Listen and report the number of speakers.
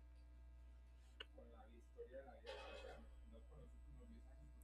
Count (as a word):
zero